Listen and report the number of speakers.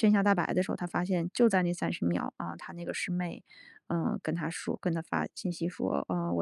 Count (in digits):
1